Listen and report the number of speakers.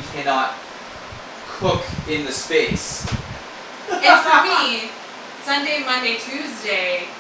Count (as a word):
two